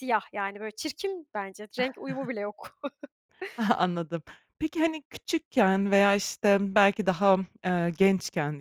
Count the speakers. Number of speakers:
2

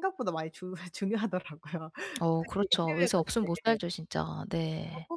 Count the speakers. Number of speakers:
2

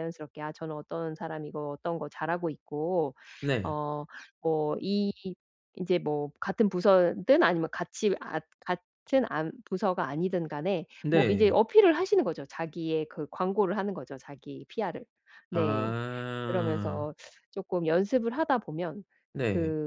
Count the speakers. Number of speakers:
2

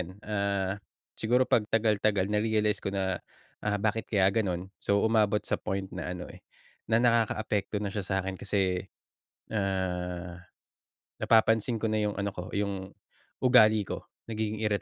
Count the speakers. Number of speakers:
1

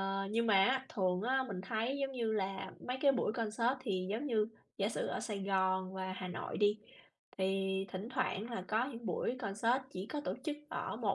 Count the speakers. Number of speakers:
1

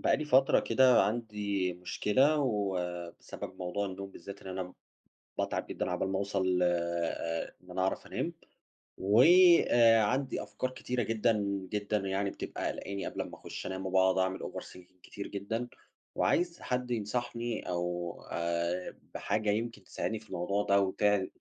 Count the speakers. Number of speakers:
1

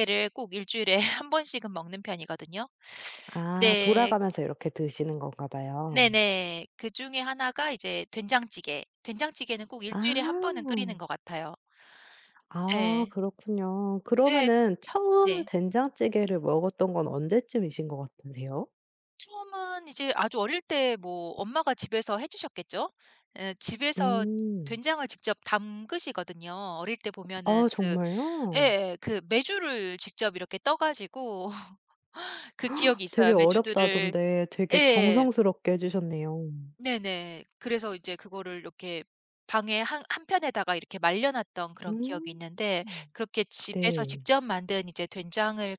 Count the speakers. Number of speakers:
2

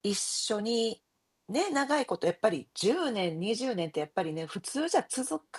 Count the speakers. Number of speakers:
1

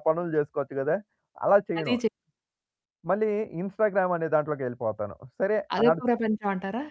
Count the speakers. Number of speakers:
2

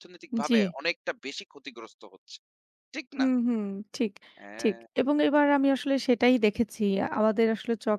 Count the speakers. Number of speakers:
2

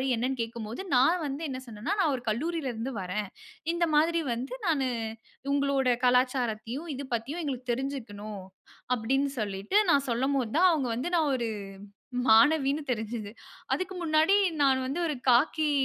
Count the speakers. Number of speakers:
1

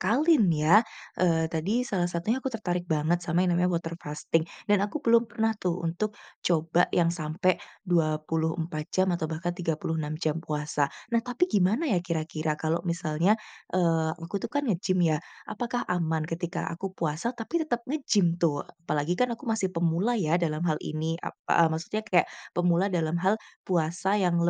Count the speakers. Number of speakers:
1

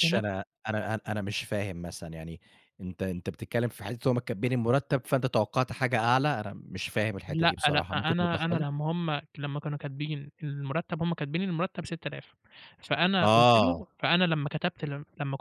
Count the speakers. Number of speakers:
2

